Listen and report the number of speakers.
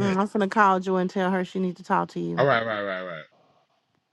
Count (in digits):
2